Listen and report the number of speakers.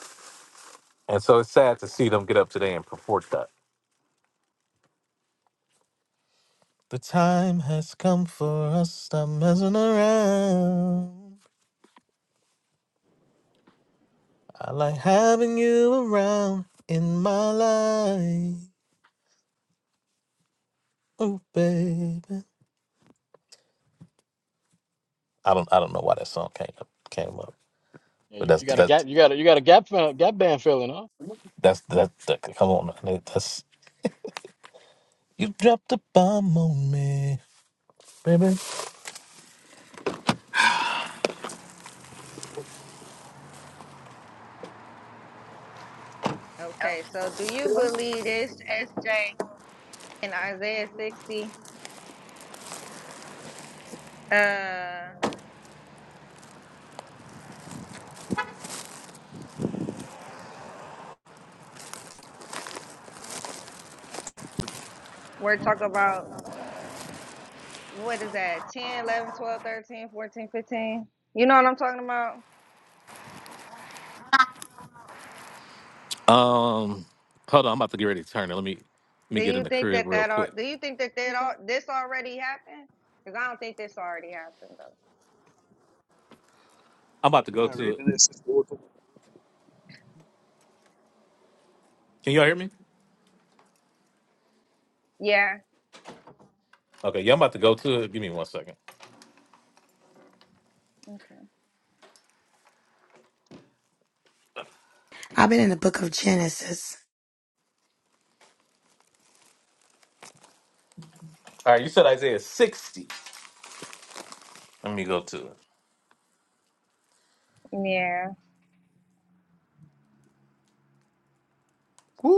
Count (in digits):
5